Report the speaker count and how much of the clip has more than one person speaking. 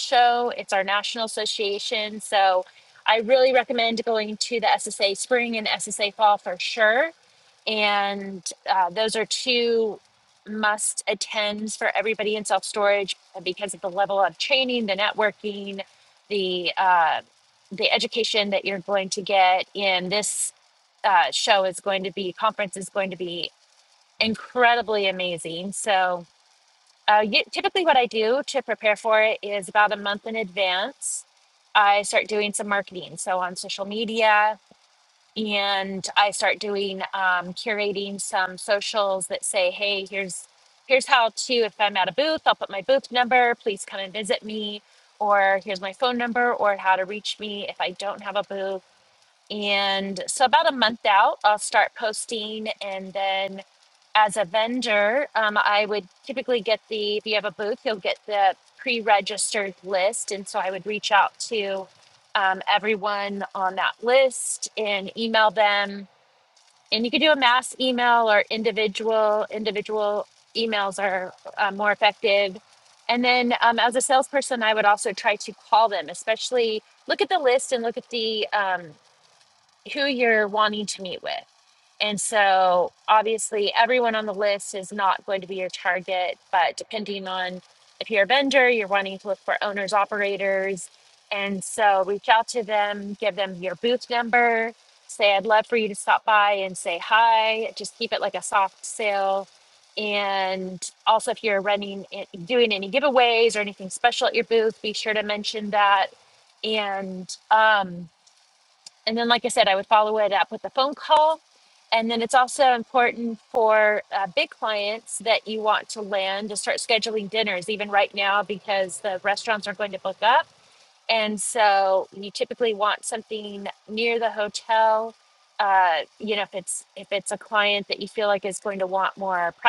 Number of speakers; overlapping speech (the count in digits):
1, no overlap